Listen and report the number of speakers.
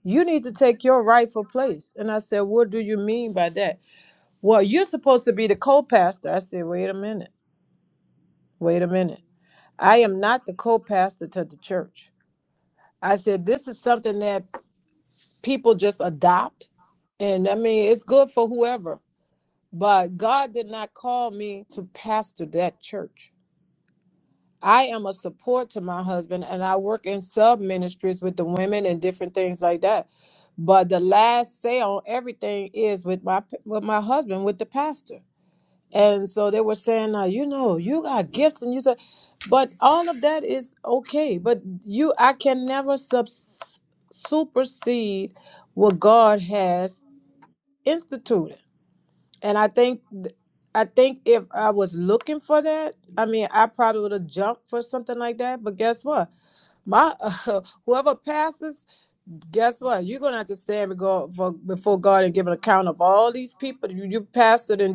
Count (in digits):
1